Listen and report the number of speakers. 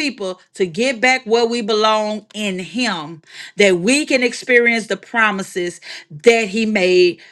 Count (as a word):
one